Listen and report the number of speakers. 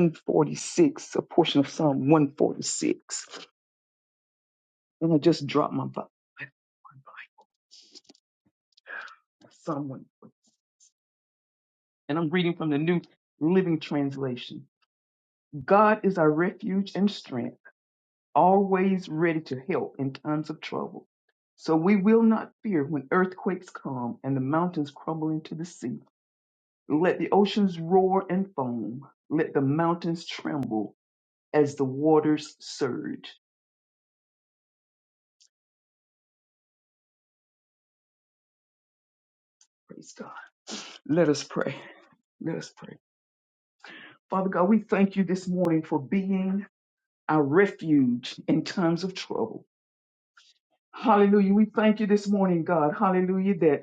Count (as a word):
one